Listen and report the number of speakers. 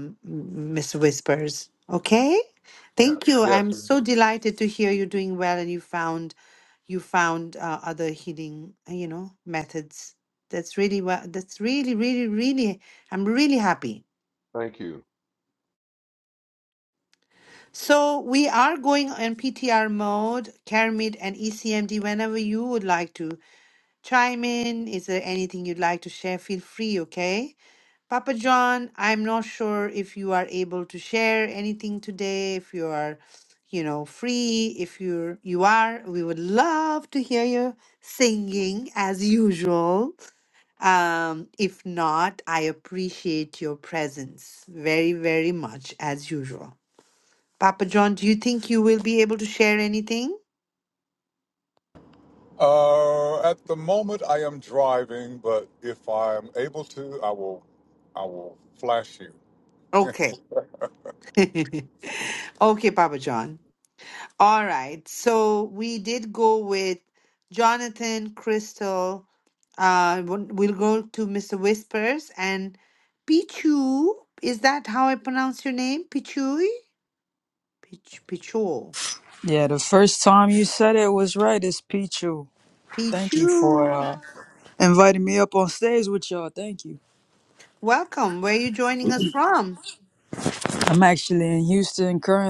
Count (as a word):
four